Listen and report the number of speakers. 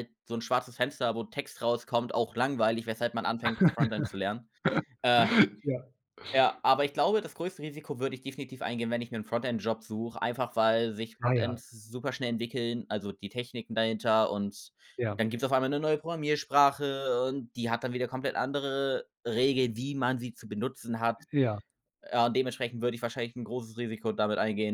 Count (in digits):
2